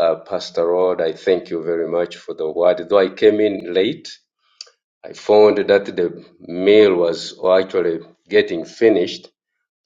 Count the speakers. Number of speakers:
1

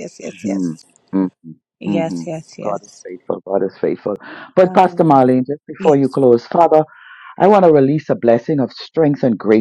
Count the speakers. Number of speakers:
2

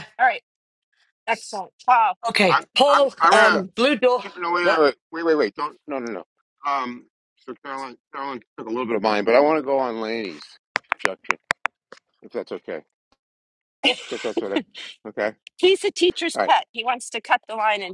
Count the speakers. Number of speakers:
3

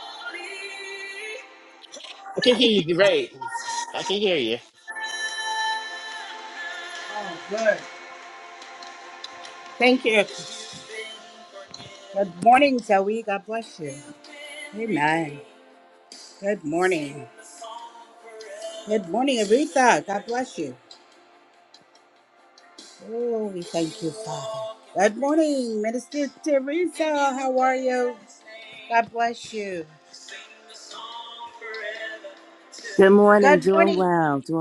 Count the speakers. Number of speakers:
3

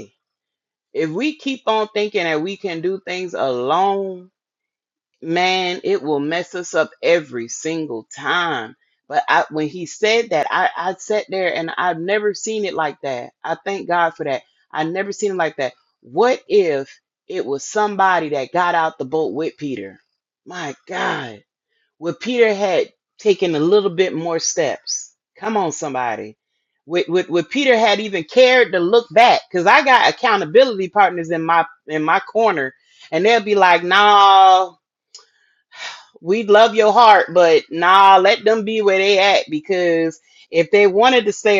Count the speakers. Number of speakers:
1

